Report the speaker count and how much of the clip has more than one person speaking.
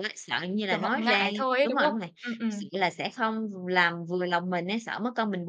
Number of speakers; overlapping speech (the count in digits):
2, about 21%